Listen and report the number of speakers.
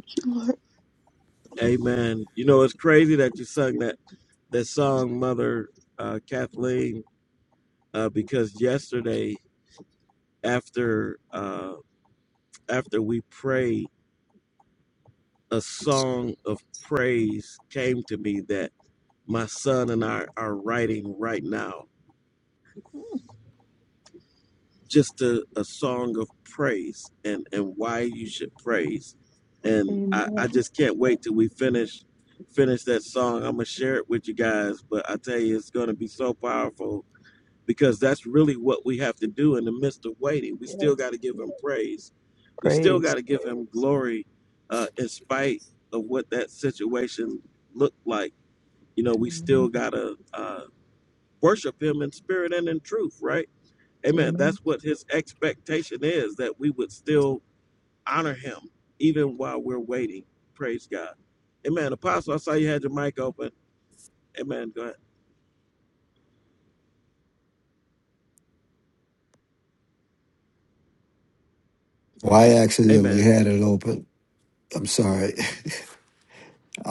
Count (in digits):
3